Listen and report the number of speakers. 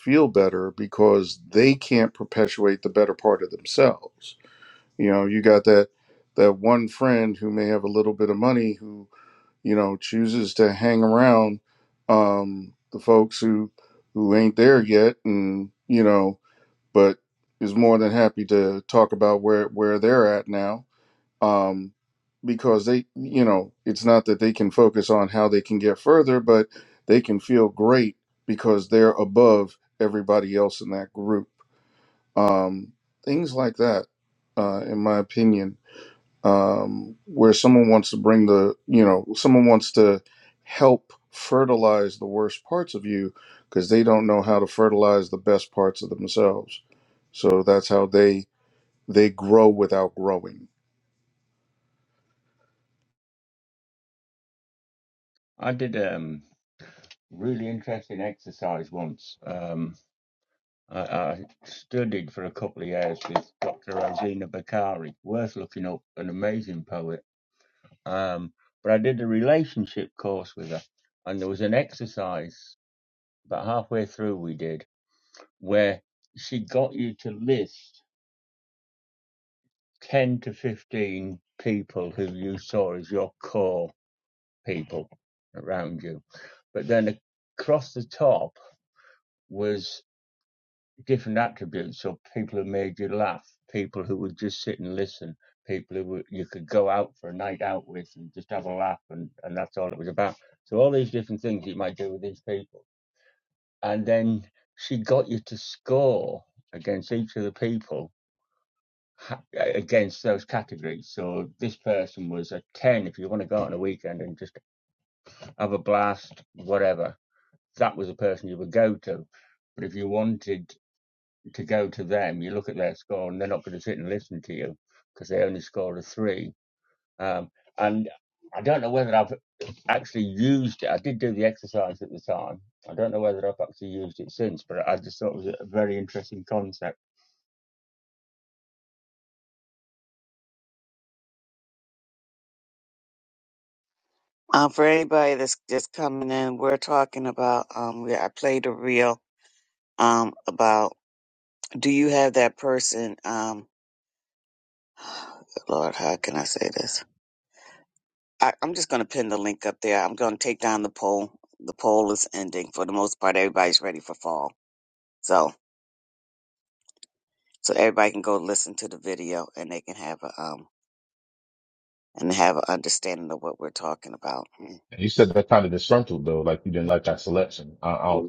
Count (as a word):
four